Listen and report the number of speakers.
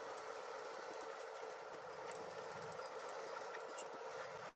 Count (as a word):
zero